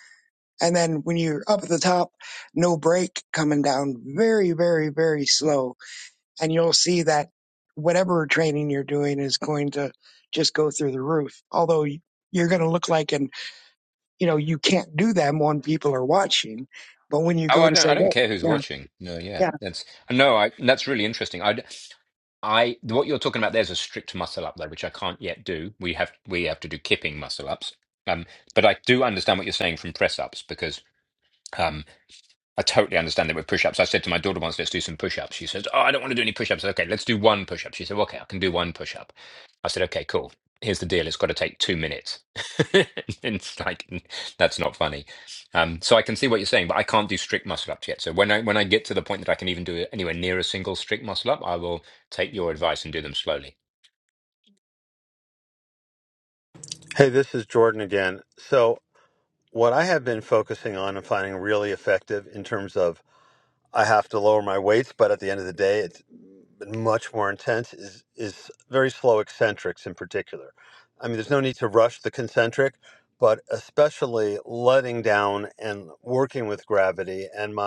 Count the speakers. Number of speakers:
3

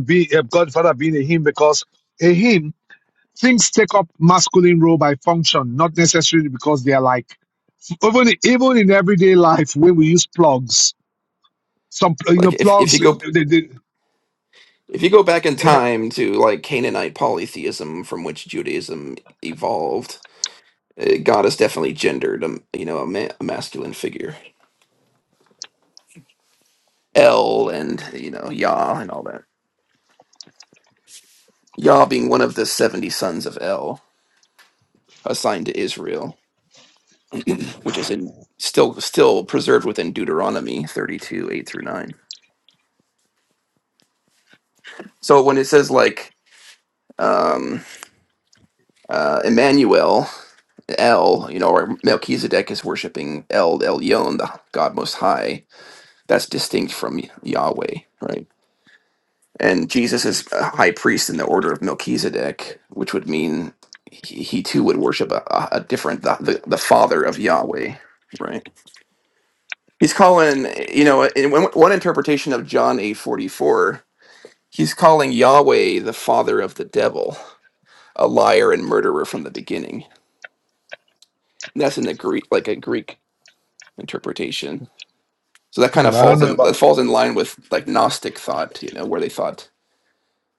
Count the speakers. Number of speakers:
2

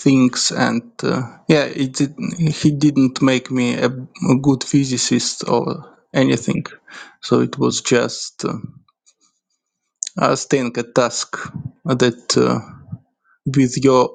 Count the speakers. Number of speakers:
1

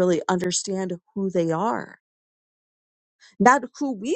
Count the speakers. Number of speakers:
1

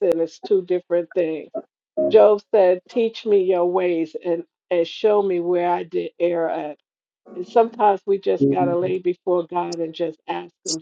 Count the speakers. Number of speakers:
1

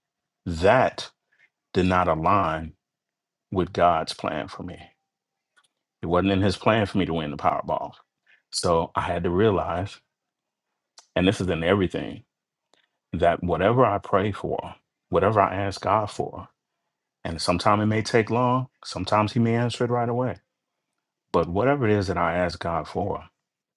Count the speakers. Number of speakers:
1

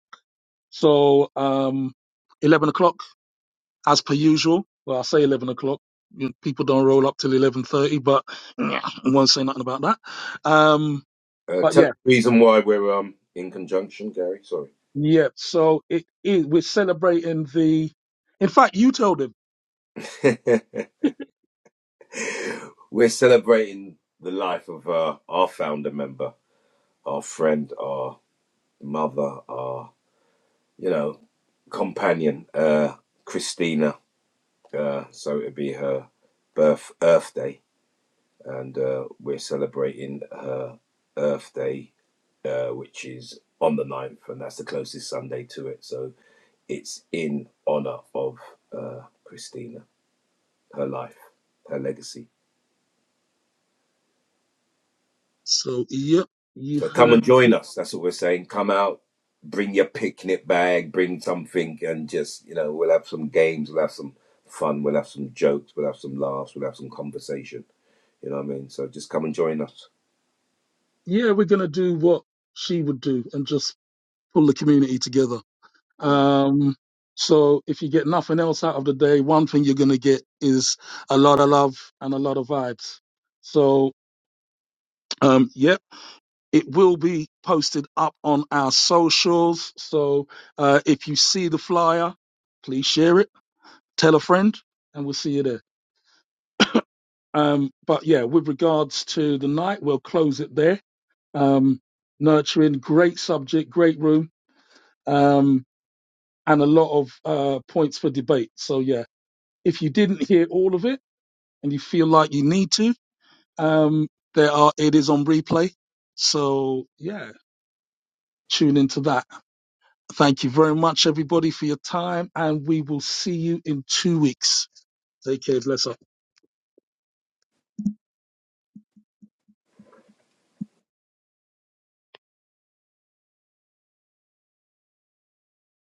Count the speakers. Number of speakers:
2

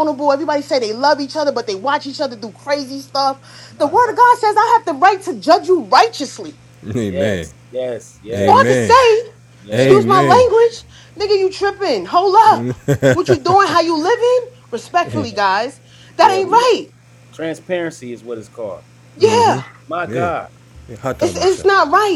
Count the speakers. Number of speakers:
3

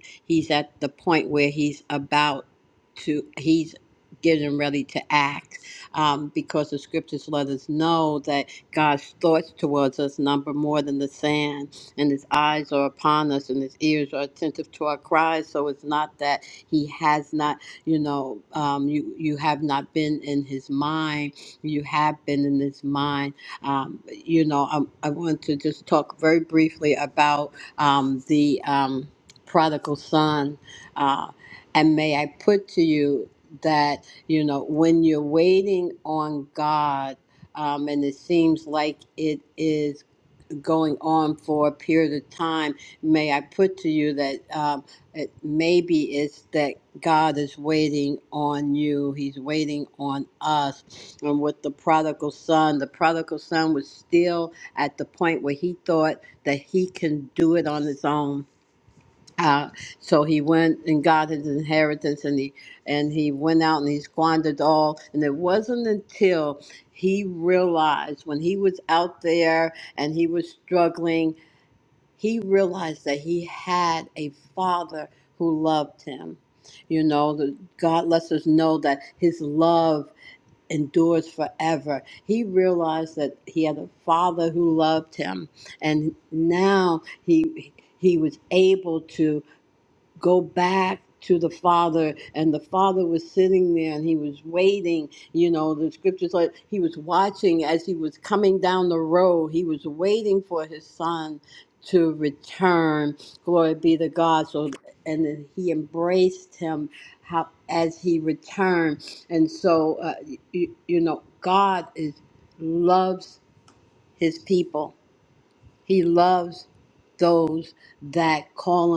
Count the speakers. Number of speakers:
1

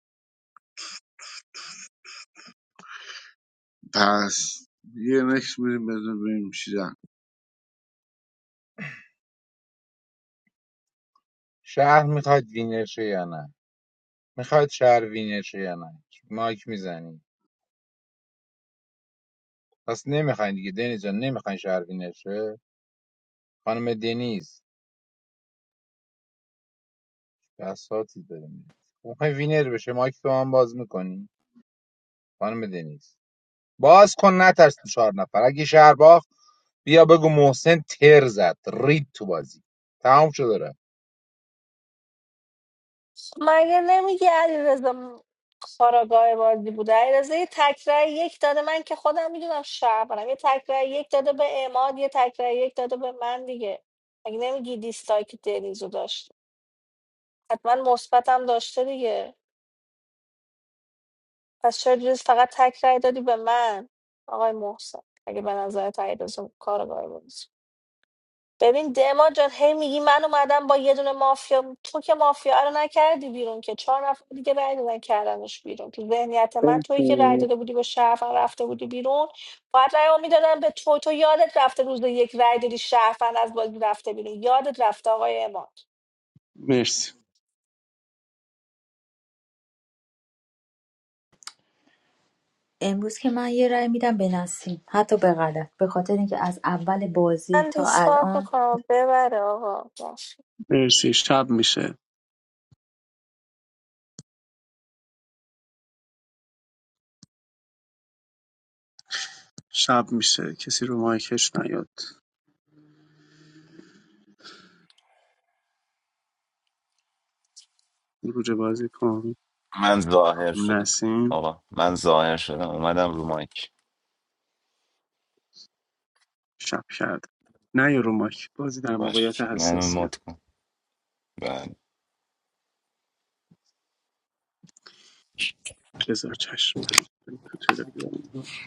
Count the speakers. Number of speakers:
6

